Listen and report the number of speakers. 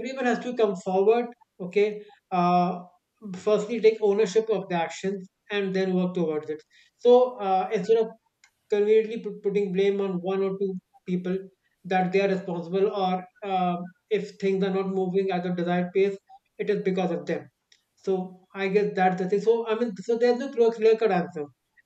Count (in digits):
1